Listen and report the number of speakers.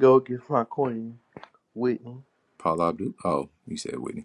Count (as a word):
two